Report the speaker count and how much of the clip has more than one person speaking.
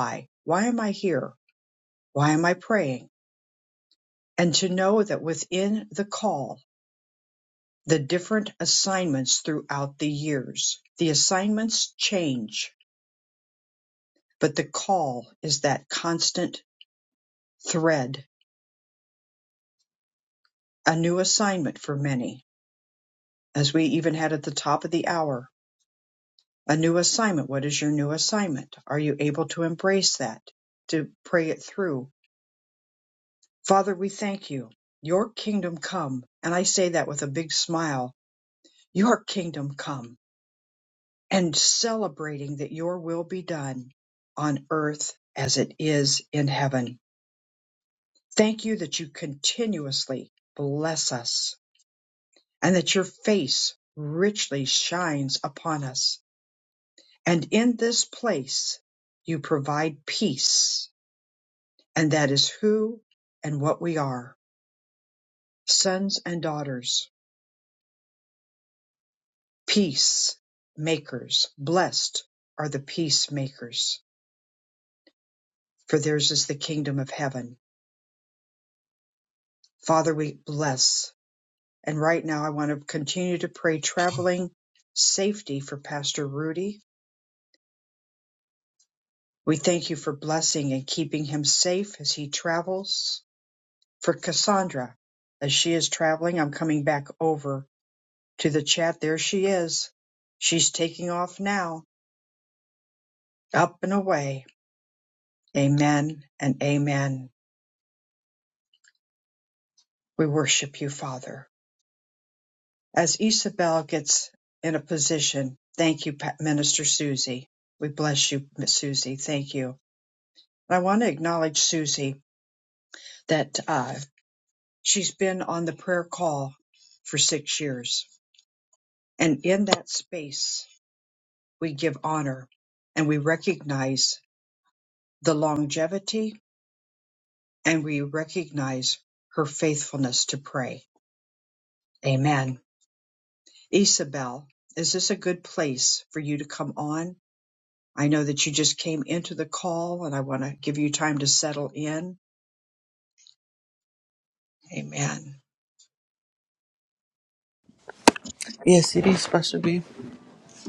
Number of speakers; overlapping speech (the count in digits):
2, no overlap